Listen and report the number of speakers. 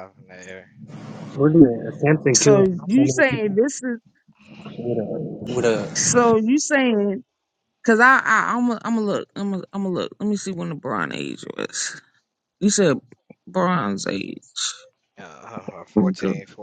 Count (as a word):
three